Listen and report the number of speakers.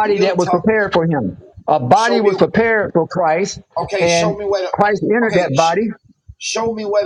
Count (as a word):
two